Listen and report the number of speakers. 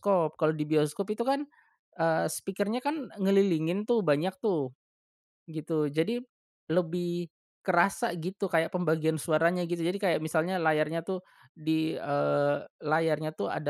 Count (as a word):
one